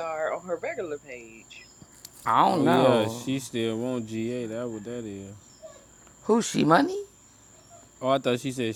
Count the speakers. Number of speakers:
3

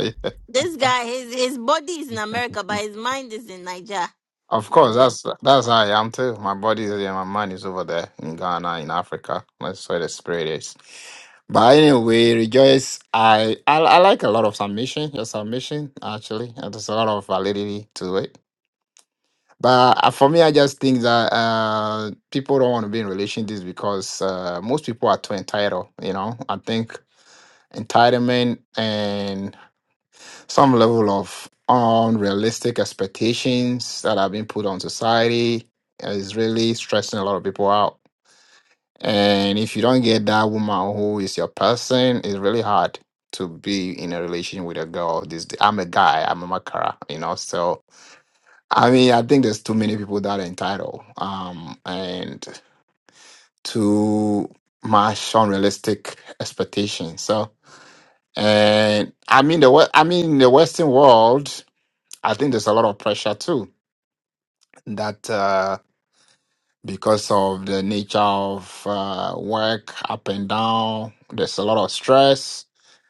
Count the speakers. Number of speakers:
2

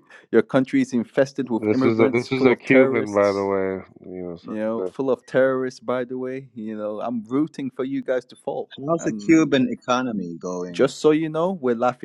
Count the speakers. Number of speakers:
3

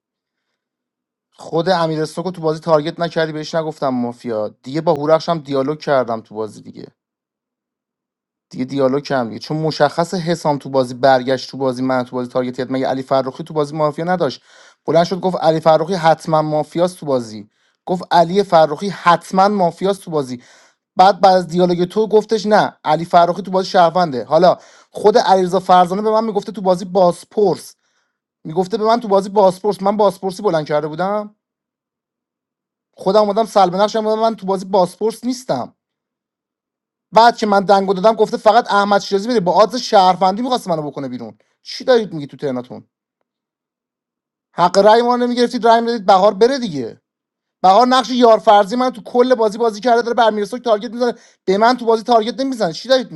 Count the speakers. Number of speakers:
1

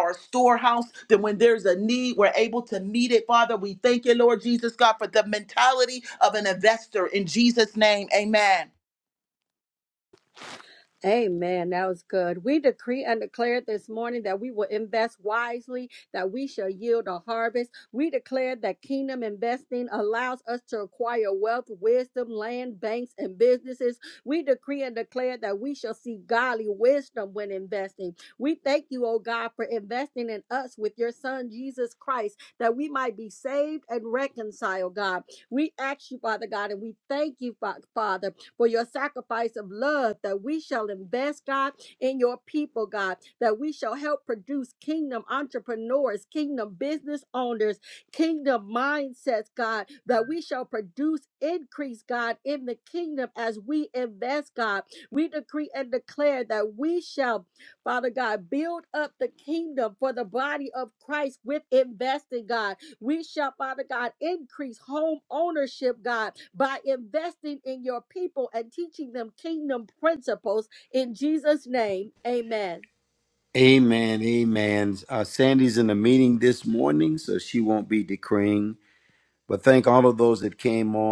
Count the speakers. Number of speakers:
3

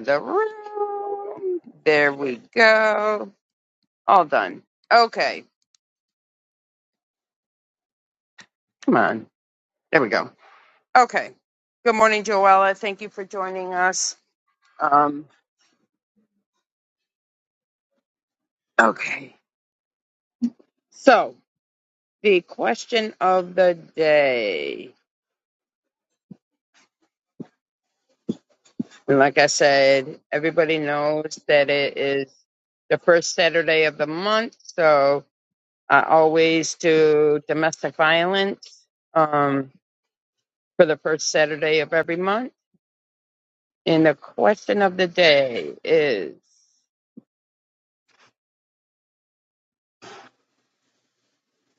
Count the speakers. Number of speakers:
1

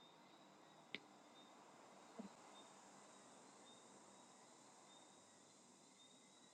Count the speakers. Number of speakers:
0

